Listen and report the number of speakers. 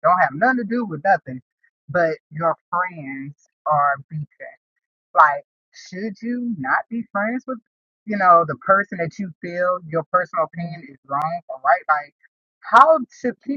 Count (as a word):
one